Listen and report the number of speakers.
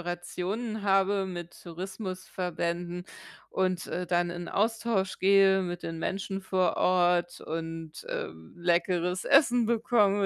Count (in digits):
1